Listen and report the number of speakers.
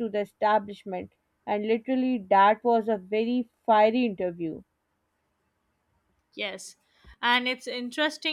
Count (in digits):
2